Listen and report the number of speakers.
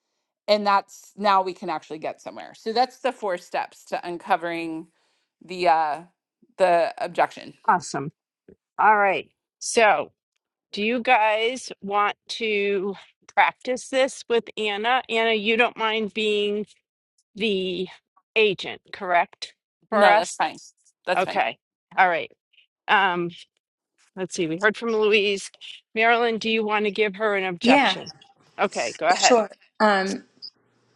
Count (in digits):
3